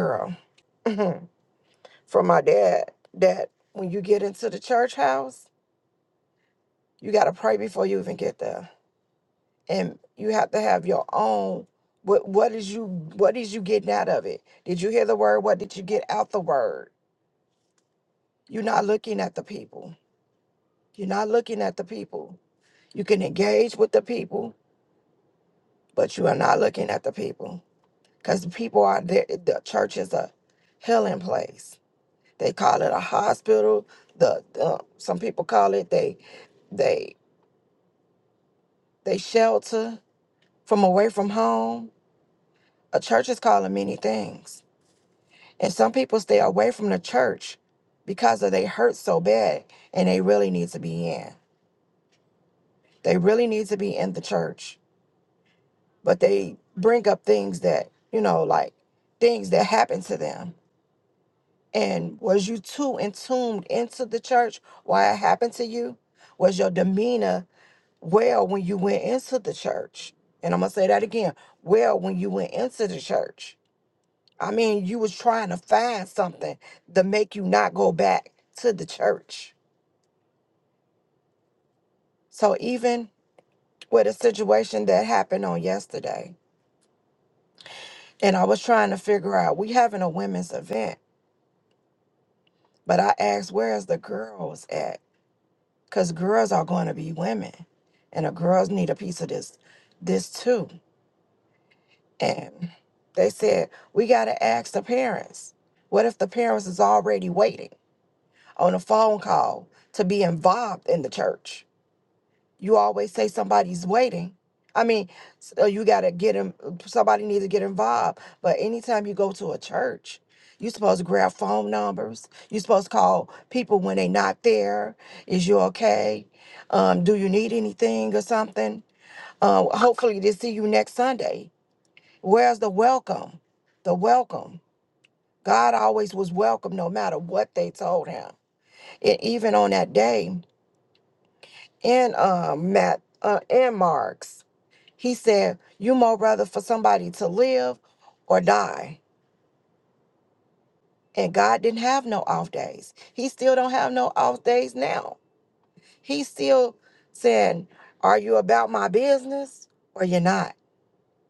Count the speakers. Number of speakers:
1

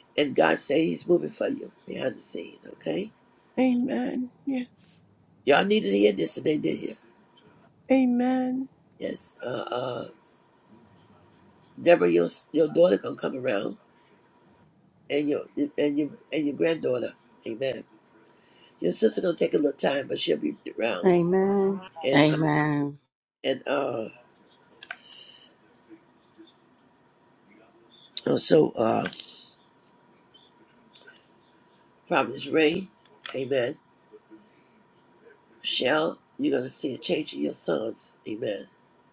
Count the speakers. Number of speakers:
3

